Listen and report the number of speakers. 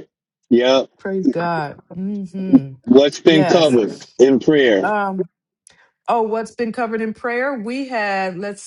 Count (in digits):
2